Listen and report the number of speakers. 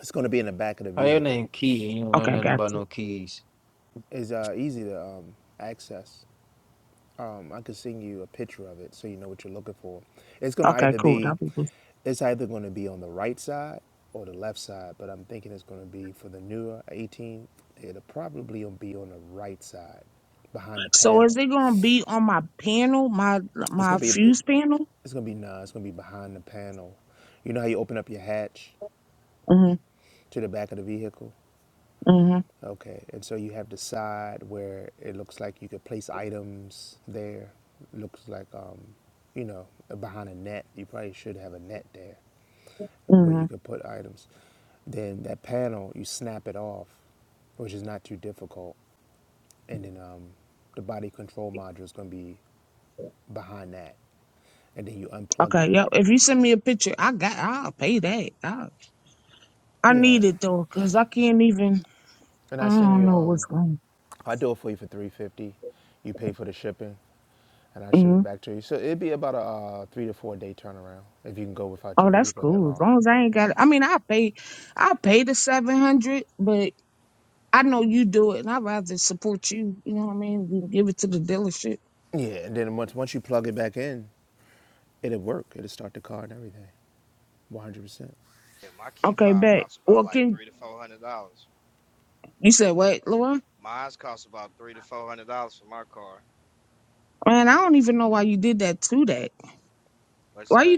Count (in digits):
4